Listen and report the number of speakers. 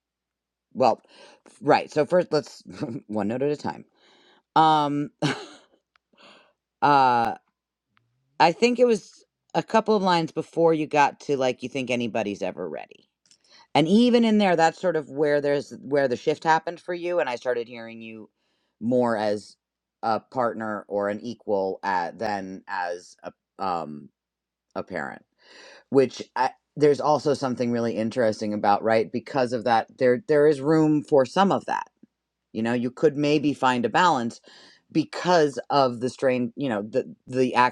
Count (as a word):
one